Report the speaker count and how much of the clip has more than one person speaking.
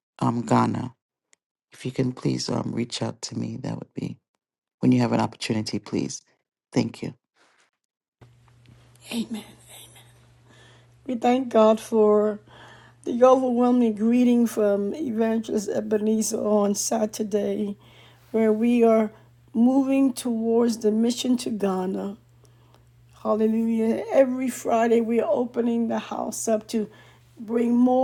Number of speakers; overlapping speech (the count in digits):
2, no overlap